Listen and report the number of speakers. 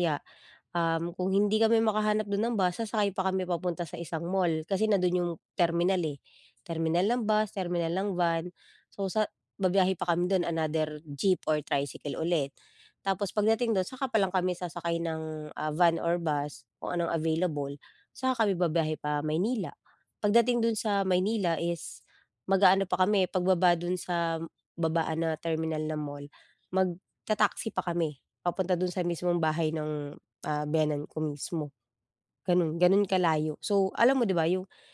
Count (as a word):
one